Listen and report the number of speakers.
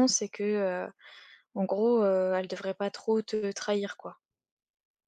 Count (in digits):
1